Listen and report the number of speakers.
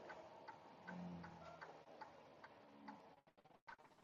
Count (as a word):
zero